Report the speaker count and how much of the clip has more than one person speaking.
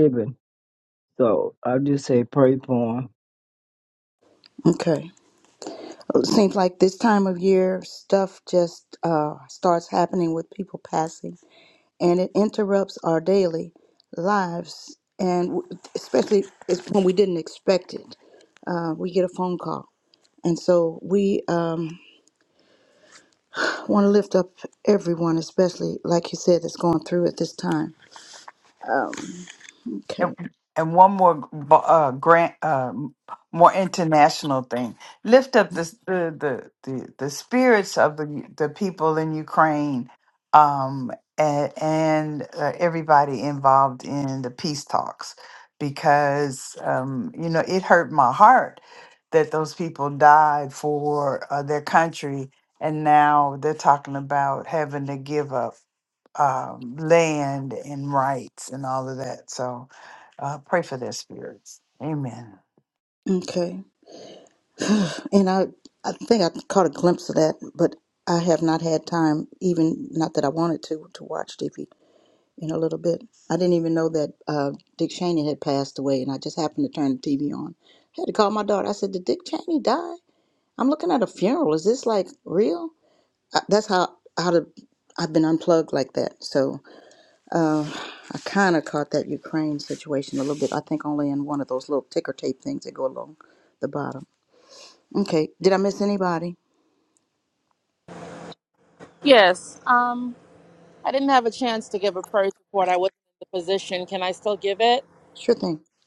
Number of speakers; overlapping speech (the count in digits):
4, under 1%